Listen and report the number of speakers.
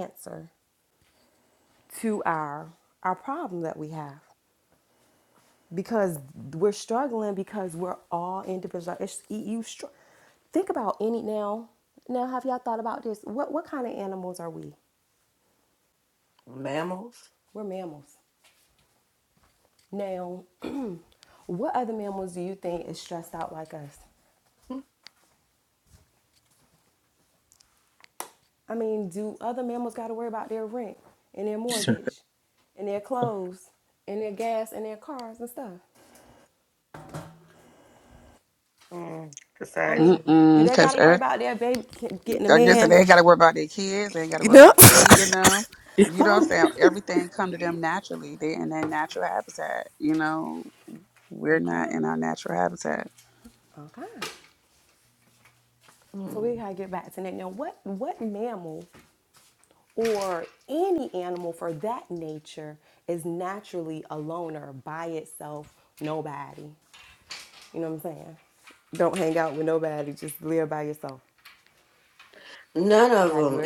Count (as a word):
three